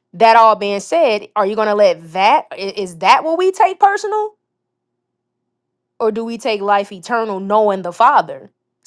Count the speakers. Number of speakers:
one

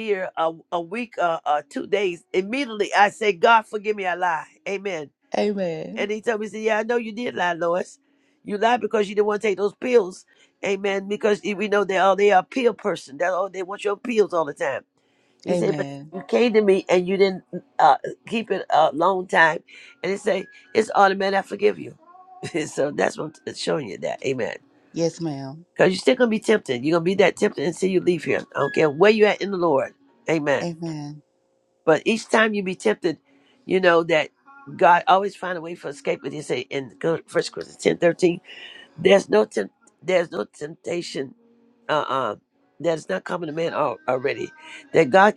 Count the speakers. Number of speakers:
two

